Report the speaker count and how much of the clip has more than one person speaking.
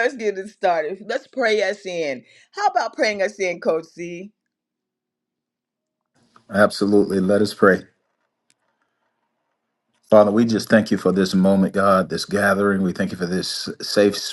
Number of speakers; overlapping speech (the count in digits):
2, no overlap